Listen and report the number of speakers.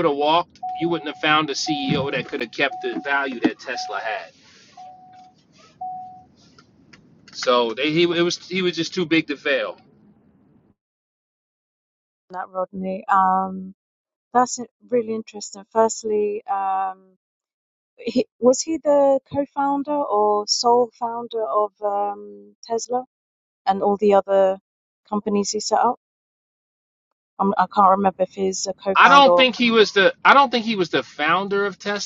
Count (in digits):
2